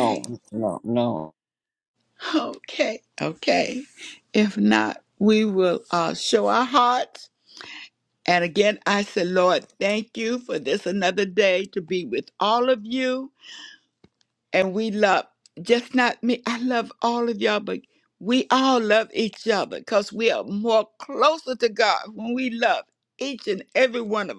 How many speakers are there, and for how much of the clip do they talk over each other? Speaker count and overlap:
two, about 1%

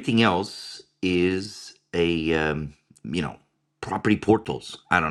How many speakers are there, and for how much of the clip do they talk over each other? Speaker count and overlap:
one, no overlap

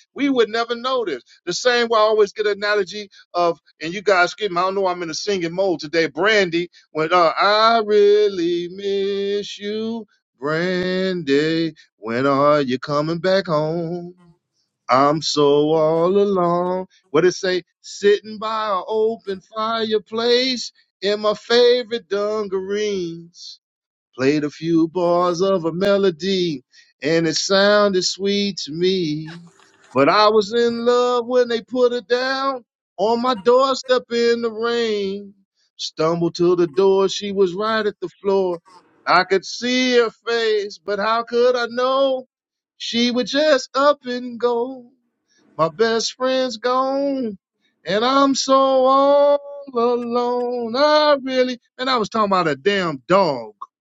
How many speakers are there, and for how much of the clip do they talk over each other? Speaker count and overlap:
one, no overlap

